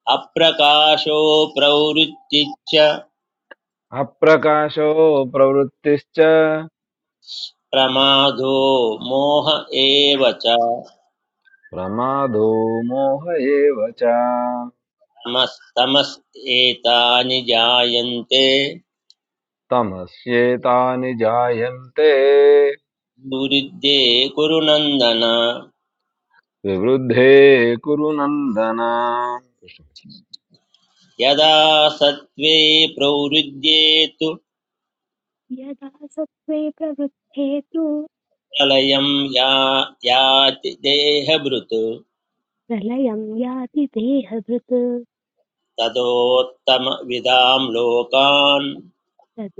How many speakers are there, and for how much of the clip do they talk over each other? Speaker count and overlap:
3, no overlap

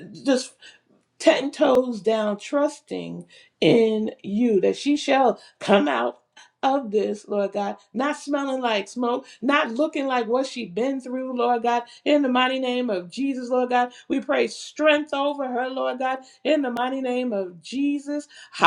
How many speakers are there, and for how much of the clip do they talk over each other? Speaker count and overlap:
1, no overlap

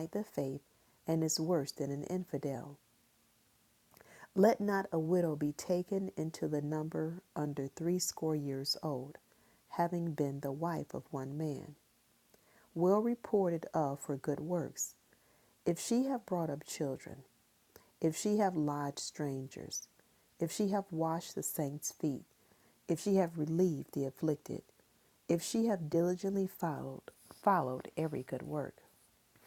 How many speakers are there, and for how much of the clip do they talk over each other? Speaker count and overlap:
1, no overlap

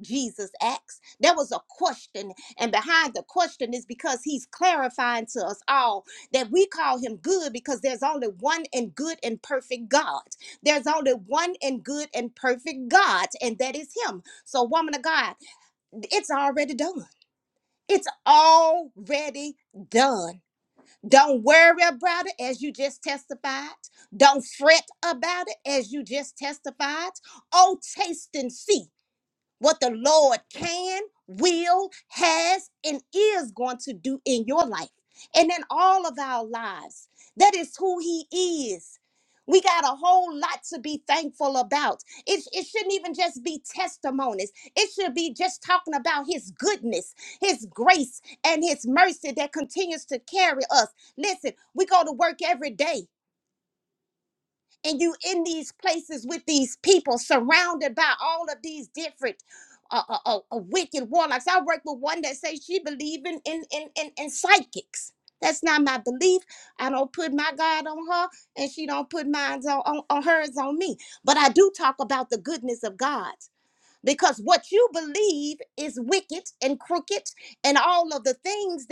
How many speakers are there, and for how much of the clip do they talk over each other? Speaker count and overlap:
1, no overlap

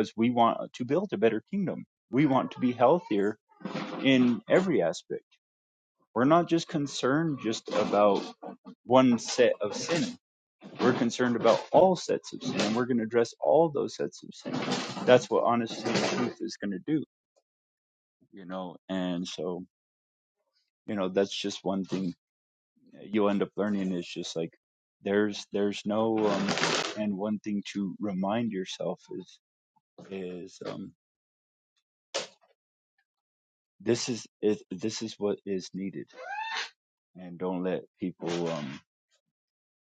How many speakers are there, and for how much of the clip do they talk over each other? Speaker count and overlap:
1, no overlap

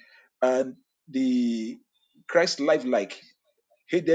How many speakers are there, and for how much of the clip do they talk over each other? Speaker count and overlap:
1, no overlap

